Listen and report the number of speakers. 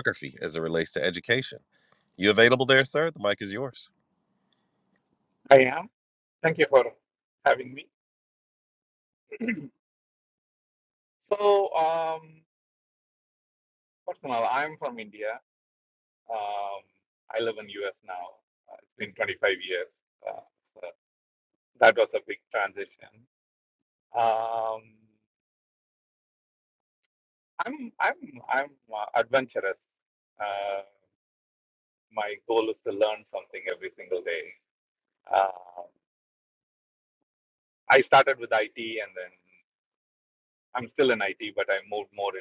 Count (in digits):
2